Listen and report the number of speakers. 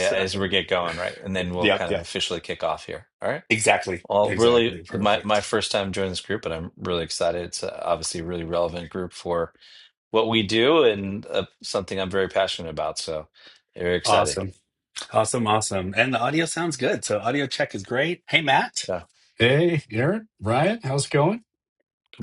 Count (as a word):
three